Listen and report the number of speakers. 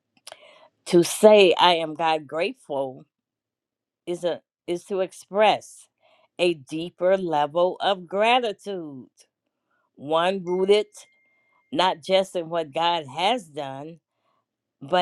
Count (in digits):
1